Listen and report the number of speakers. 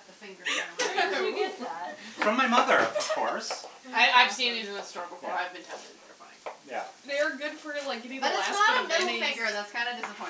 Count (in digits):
4